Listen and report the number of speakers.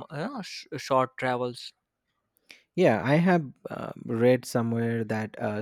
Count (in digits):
2